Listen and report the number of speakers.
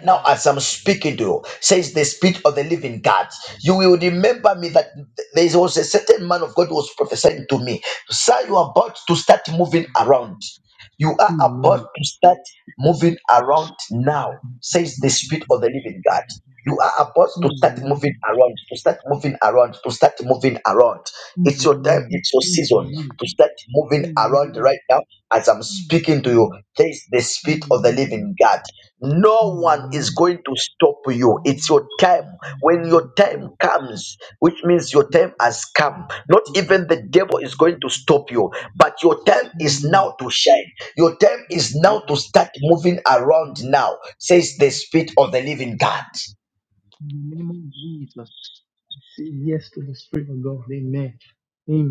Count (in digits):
2